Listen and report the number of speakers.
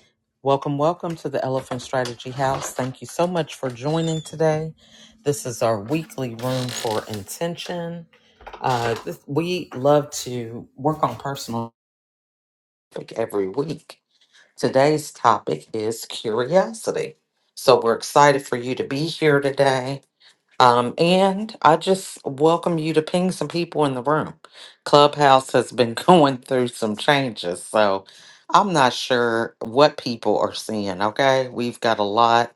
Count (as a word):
one